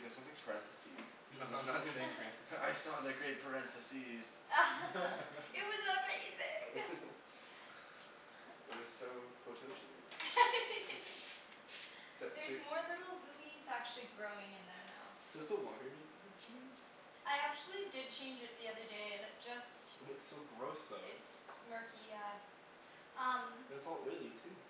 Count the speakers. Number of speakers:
3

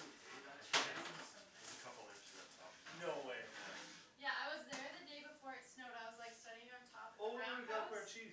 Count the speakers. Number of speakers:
3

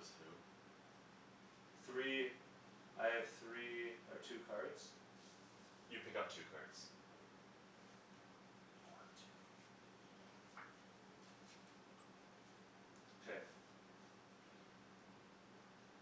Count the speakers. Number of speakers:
2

